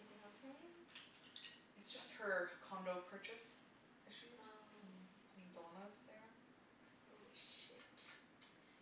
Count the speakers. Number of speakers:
2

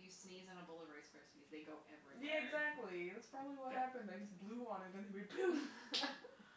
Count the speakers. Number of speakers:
2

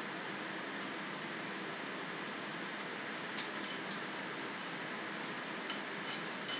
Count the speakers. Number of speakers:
0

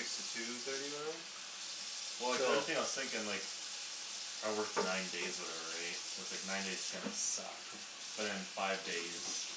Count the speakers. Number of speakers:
2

